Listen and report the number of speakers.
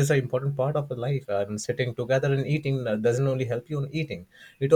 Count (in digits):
1